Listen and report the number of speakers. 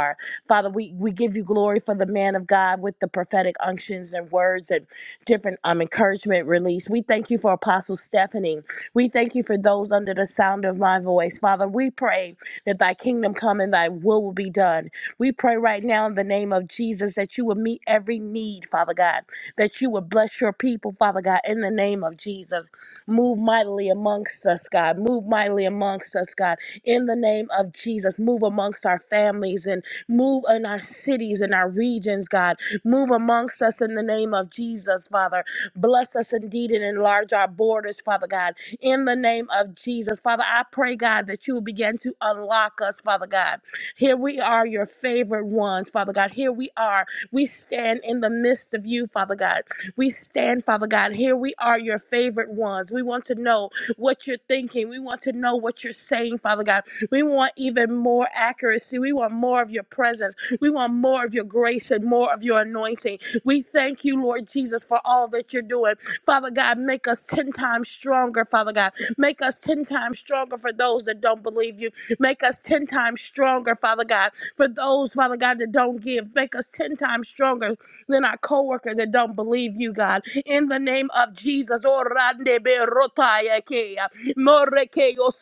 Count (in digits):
1